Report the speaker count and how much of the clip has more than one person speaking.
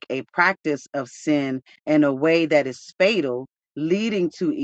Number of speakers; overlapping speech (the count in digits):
1, no overlap